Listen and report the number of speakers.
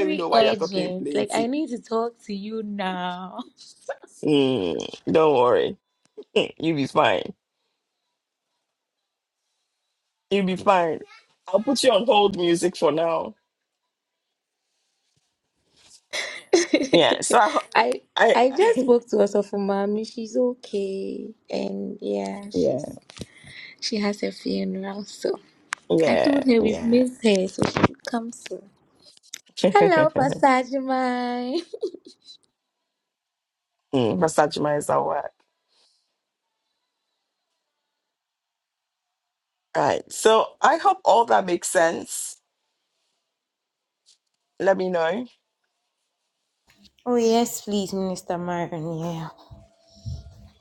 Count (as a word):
three